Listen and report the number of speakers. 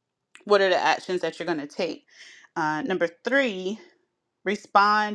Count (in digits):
1